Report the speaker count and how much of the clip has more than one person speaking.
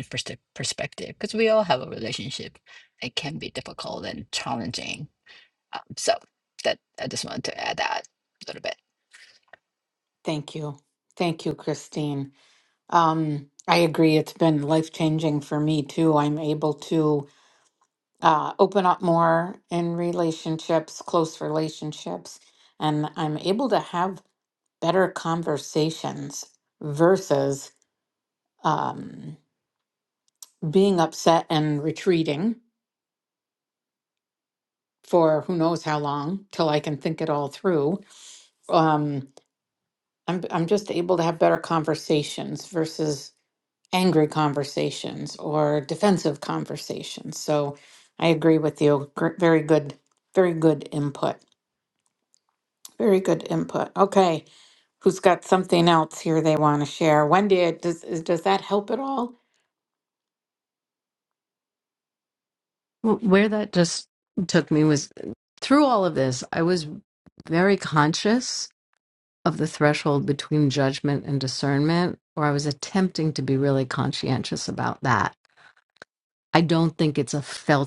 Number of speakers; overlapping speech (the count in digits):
3, no overlap